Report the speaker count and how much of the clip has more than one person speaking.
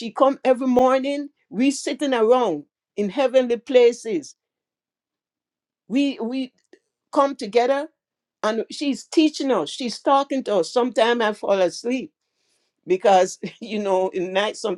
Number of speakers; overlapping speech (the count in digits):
1, no overlap